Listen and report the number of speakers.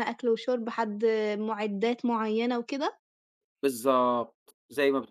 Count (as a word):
two